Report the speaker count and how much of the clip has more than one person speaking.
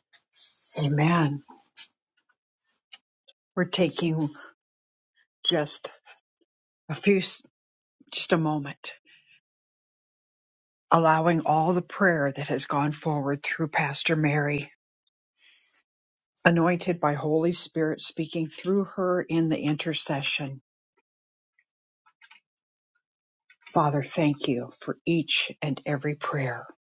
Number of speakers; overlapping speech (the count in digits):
1, no overlap